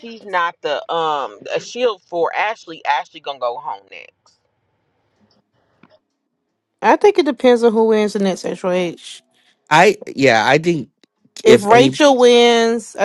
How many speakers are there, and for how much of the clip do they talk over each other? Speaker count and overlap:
3, about 4%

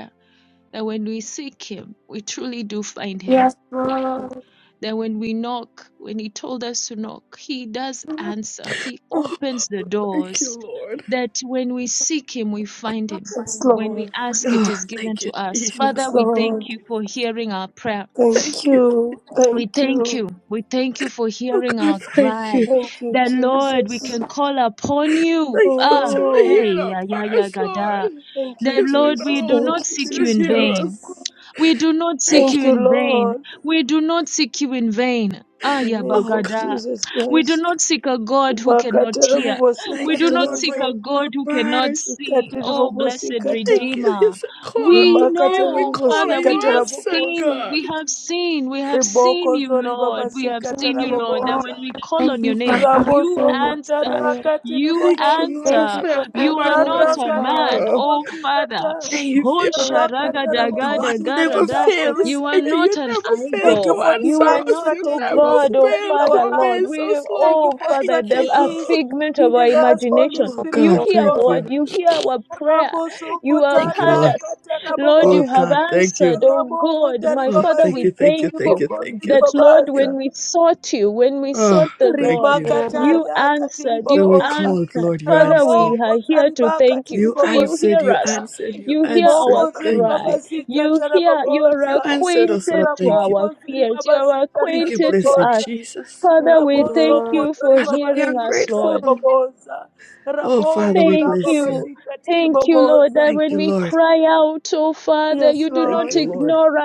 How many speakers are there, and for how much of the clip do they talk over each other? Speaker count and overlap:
4, about 66%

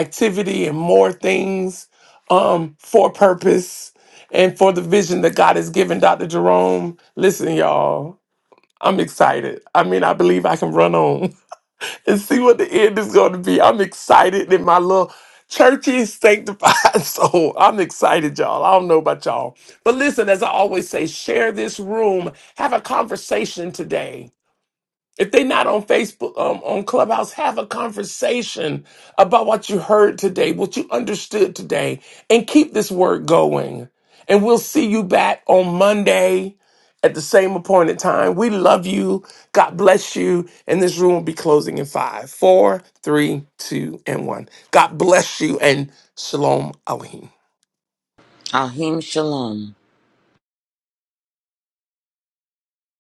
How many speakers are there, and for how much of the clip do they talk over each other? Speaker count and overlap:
2, no overlap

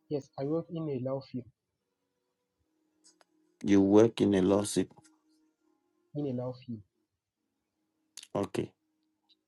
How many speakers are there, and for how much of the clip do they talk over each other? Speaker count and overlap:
2, no overlap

